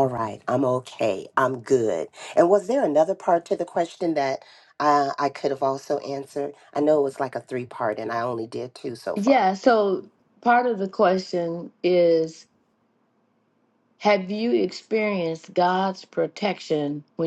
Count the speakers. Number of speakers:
2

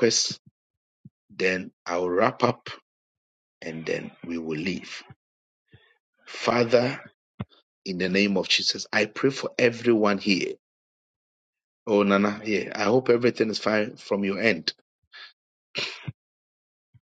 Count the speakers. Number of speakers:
1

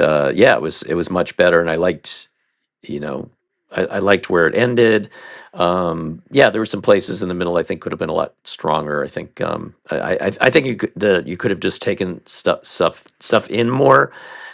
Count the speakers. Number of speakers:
1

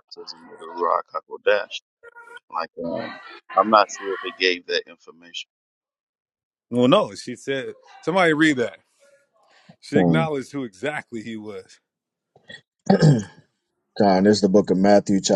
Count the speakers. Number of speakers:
3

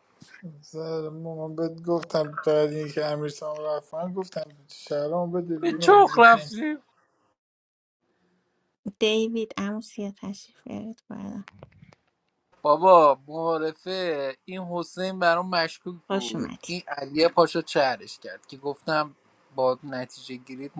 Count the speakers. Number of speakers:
3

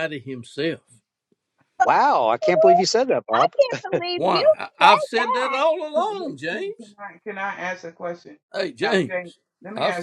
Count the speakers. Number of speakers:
4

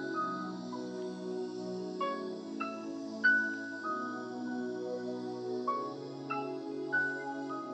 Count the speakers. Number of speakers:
0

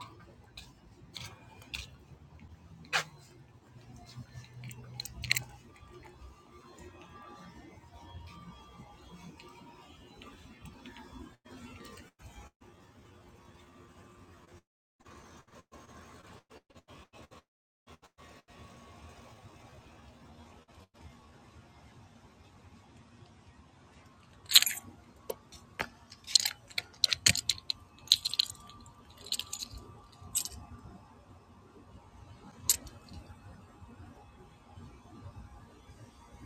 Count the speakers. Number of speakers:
0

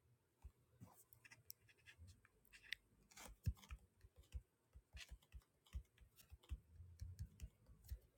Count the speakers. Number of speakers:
0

